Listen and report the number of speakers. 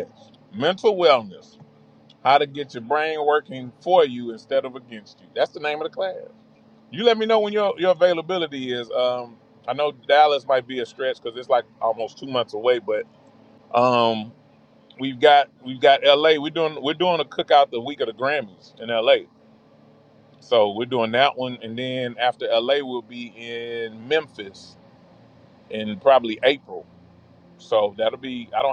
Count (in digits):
1